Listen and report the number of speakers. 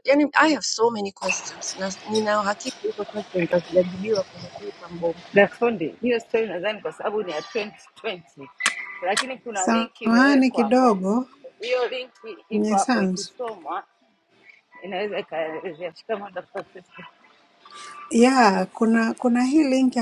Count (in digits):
3